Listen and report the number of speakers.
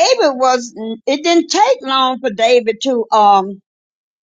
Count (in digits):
1